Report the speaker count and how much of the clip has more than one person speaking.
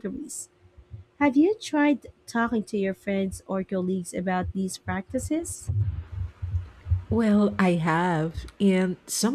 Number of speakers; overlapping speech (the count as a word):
two, no overlap